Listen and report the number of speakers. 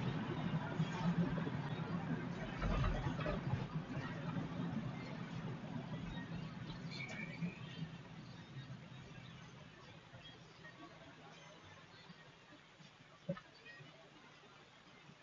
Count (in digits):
0